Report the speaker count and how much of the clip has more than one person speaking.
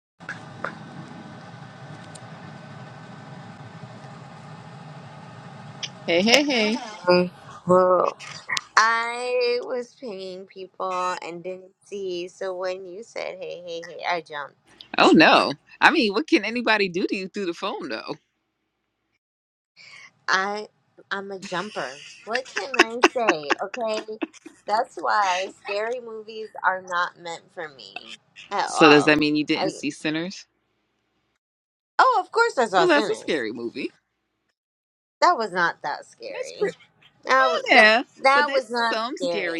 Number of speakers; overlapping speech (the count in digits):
2, about 9%